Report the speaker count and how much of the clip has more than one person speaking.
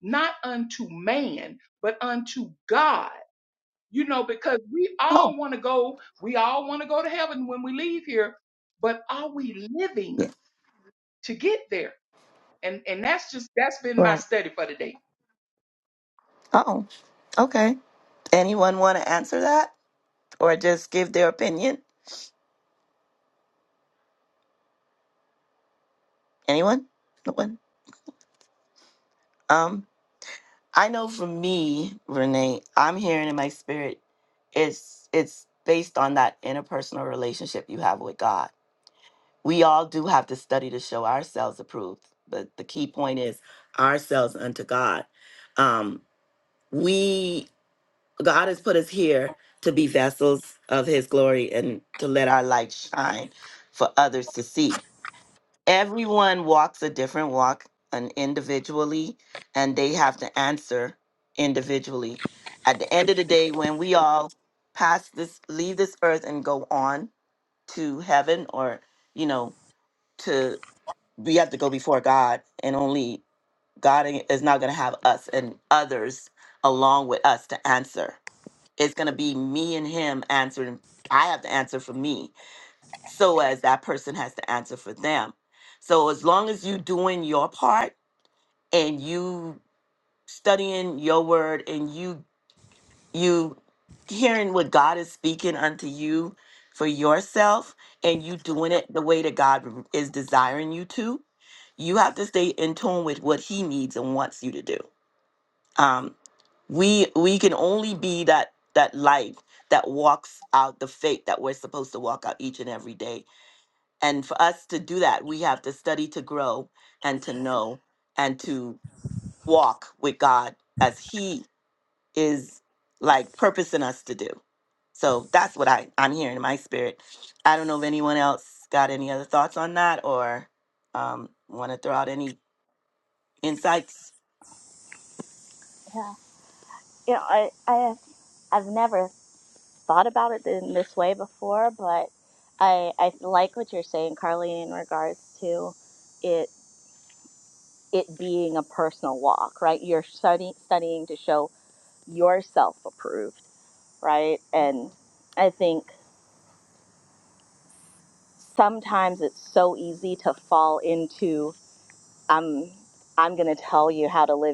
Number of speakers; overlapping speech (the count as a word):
three, under 1%